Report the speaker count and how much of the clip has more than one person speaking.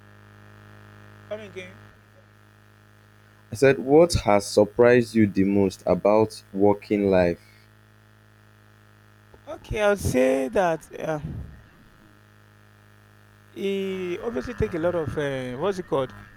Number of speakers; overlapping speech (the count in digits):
2, no overlap